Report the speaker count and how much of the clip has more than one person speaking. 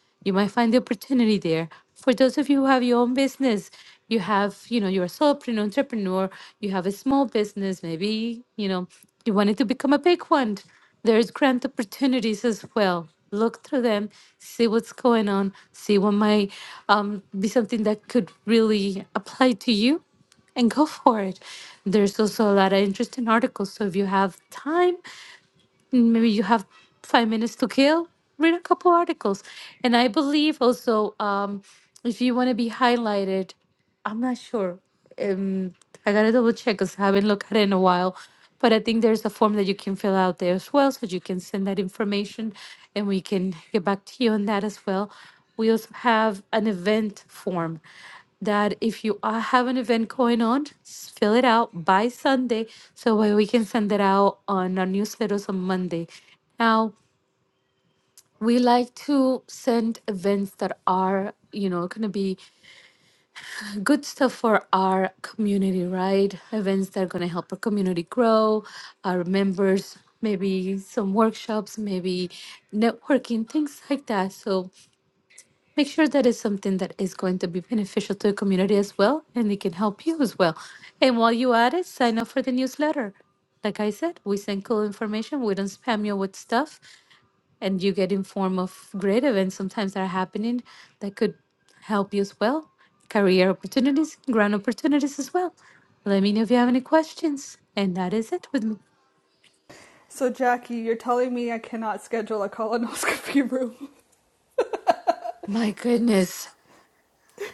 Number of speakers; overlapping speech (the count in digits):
2, no overlap